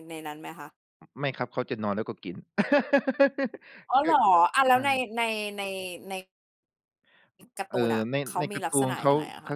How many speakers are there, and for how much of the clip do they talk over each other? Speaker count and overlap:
2, about 21%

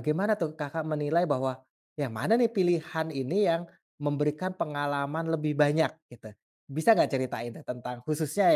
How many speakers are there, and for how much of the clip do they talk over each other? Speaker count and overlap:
1, no overlap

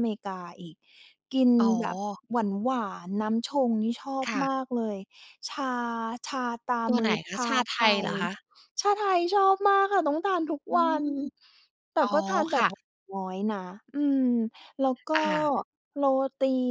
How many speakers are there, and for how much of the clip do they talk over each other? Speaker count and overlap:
2, about 16%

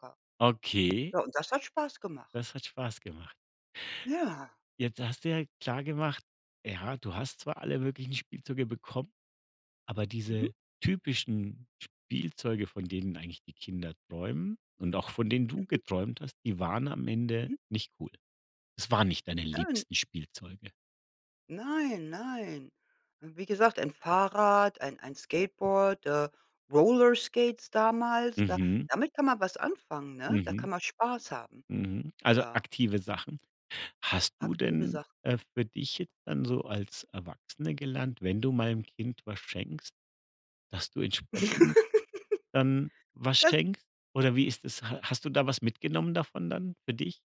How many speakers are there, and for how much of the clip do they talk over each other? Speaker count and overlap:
2, about 6%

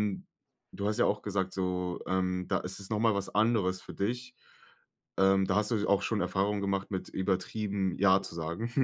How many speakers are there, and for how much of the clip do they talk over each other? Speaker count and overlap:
1, no overlap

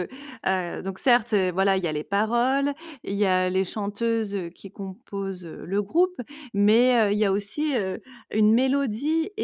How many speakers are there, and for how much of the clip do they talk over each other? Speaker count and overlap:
1, no overlap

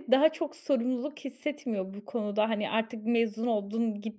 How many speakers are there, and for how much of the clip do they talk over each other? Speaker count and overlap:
1, no overlap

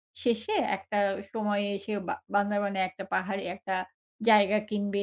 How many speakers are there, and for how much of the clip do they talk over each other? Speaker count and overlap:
1, no overlap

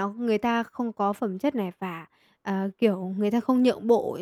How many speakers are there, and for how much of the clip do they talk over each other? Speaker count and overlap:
1, no overlap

